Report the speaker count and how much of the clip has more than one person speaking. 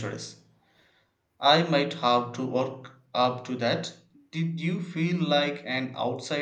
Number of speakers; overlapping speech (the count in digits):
1, no overlap